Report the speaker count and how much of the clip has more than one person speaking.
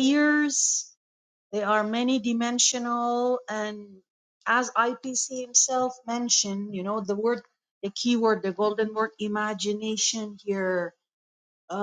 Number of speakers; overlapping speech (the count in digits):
1, no overlap